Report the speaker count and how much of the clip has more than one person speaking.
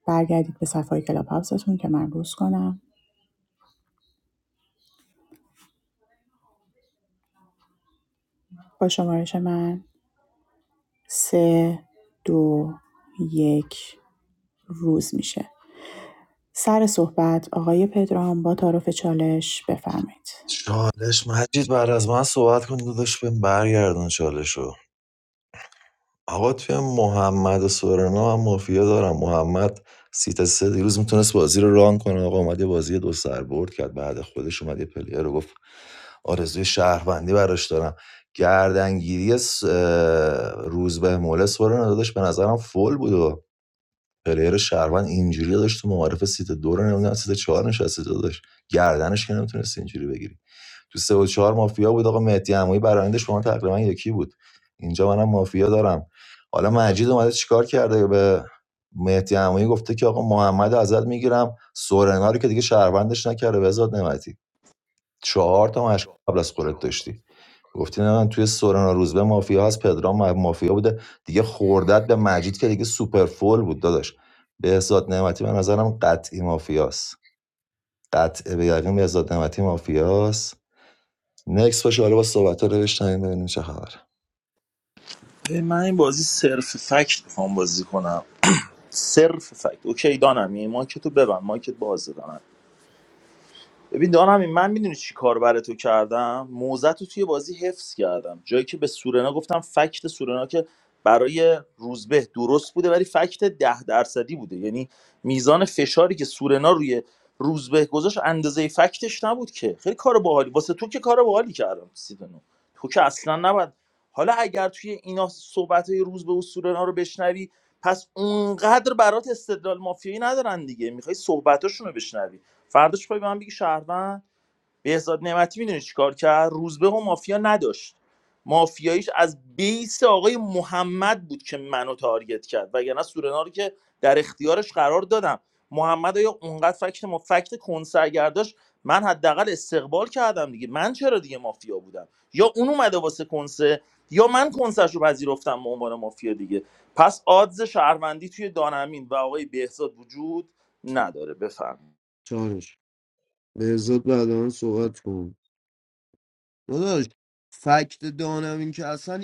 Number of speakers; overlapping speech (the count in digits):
4, no overlap